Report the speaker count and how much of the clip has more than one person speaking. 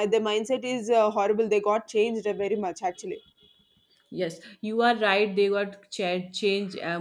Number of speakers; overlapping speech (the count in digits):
2, no overlap